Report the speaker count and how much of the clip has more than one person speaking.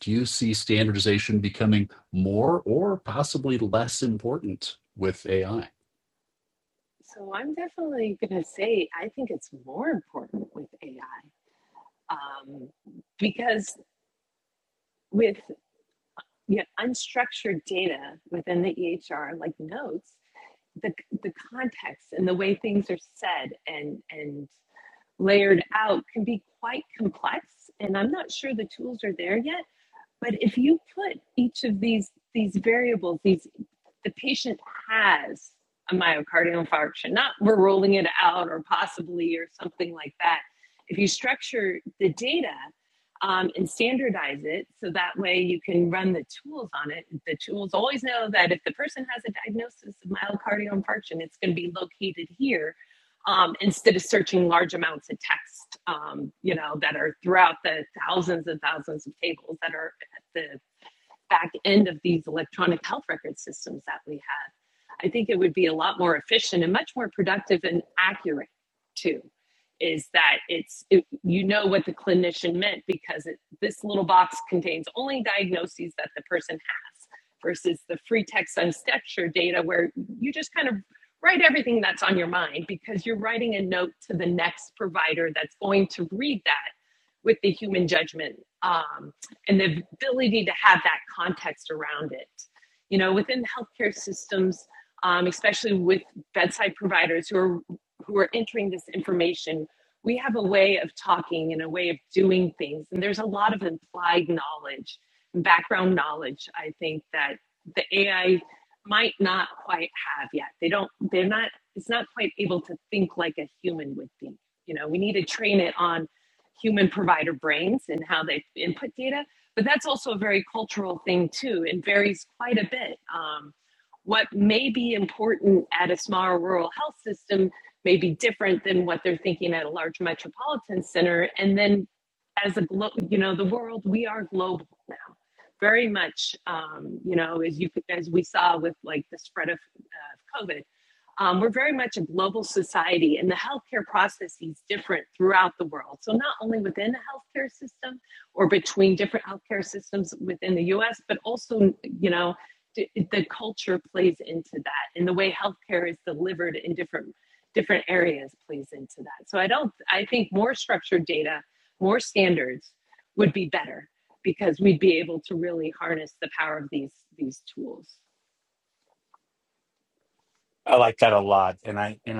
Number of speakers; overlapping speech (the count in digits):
3, no overlap